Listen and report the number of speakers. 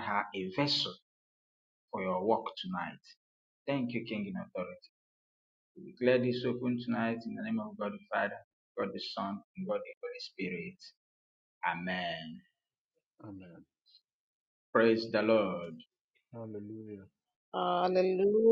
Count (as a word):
three